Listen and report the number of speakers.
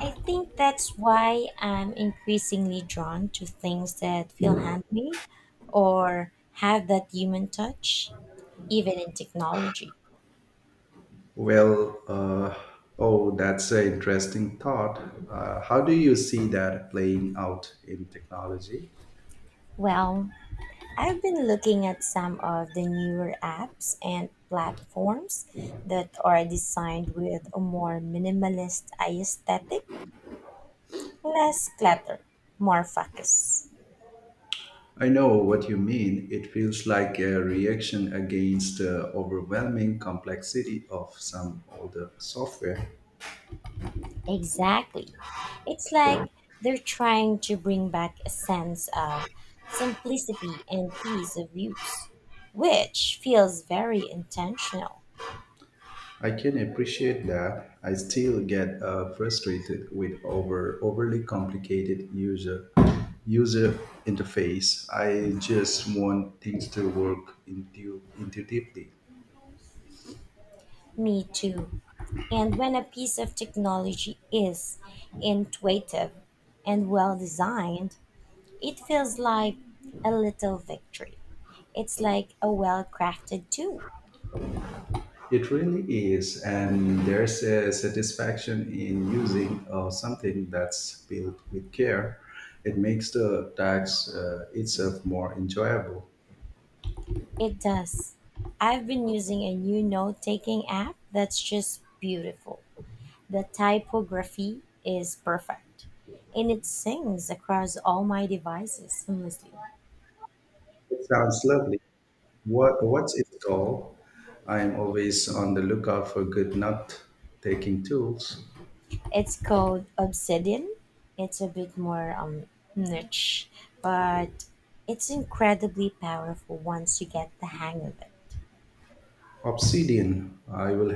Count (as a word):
two